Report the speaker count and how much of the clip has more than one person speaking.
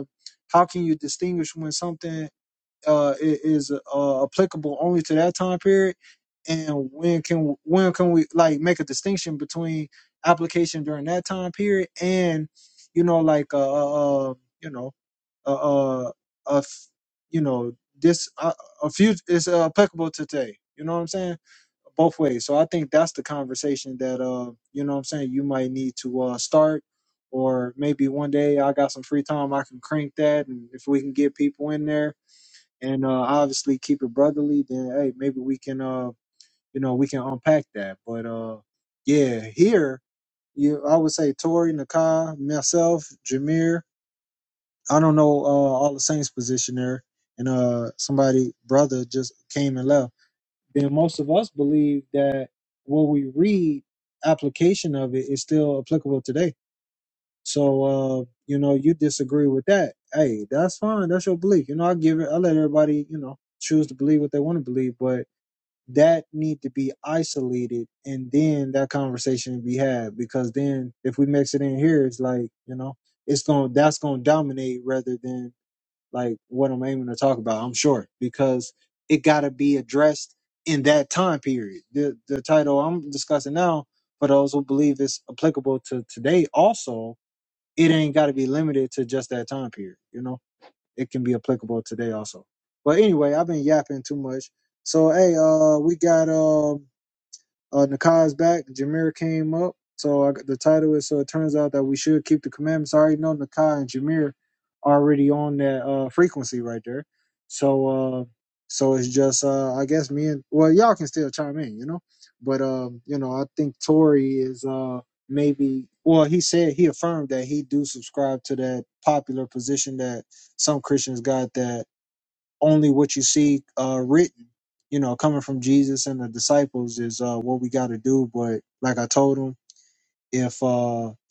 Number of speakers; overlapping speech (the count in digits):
1, no overlap